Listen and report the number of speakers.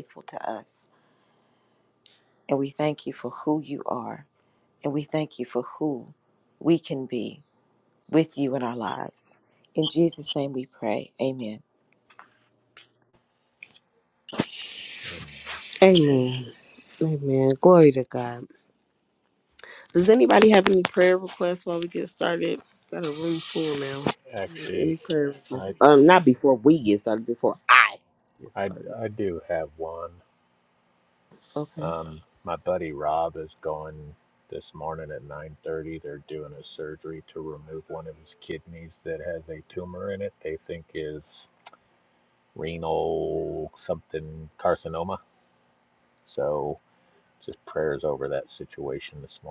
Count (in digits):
3